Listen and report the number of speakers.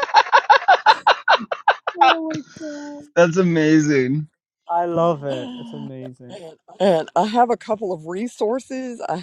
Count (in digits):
3